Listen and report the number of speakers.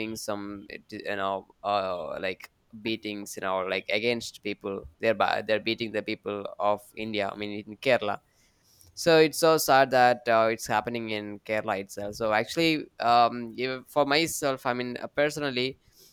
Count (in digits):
1